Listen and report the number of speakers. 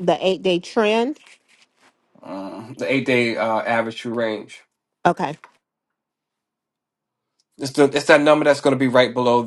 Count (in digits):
2